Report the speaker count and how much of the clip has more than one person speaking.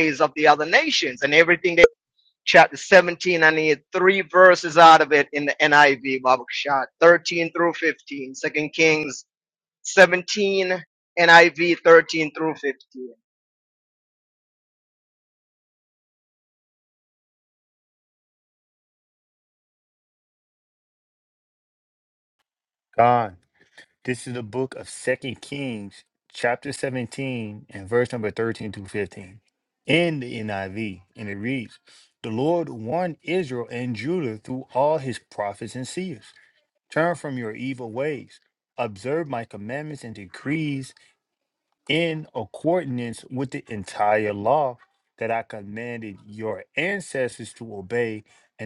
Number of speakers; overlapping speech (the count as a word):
two, no overlap